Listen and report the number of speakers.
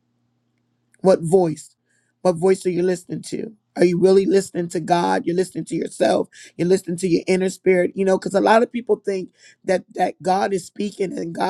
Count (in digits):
1